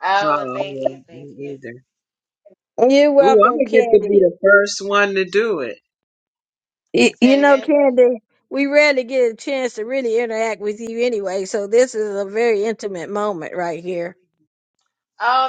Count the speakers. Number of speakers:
3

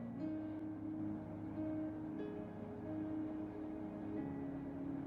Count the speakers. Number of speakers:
0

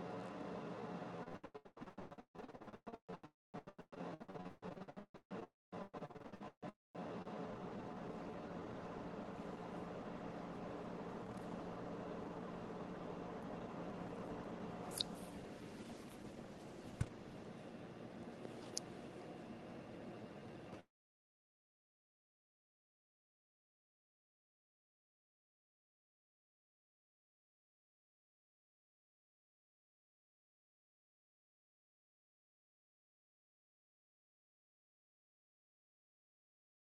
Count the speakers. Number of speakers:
0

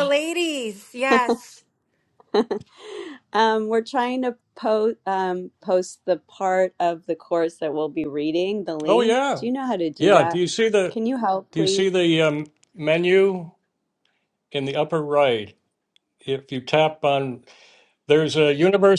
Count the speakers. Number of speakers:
3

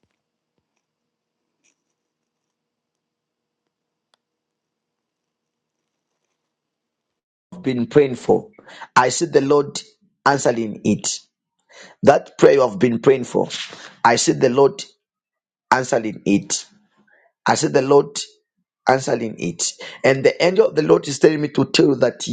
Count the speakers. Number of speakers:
1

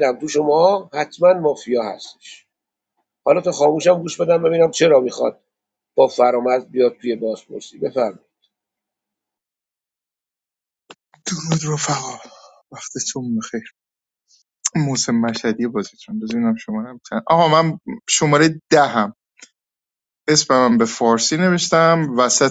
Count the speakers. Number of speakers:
2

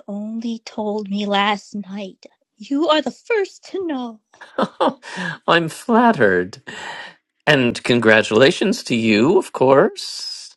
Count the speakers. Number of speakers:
2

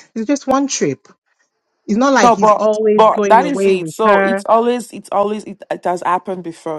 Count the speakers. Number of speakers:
2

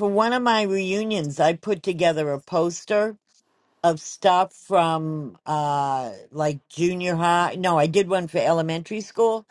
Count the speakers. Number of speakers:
1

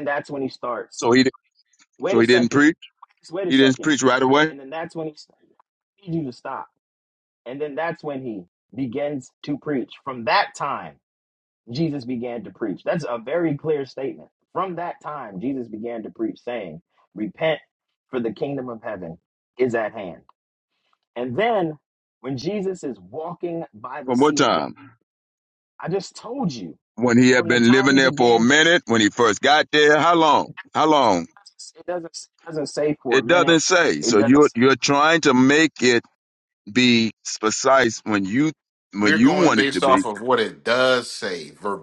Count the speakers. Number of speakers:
3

